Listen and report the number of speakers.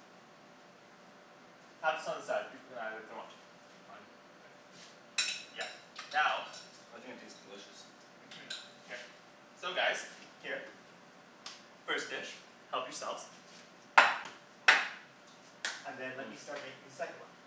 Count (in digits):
2